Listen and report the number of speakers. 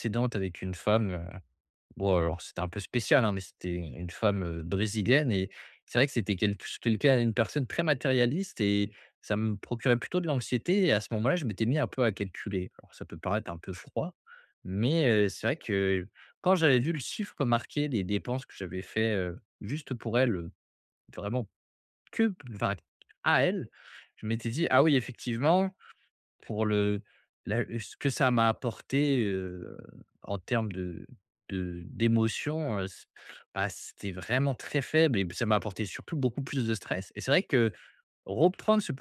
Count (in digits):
1